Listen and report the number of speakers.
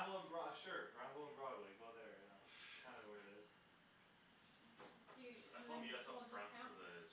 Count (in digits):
2